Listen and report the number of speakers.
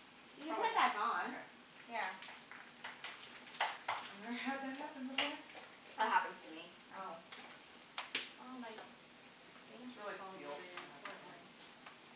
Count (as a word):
two